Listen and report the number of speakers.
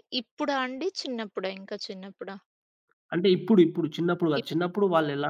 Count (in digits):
2